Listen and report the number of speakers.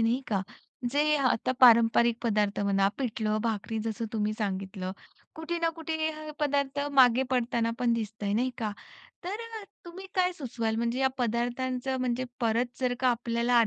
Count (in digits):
1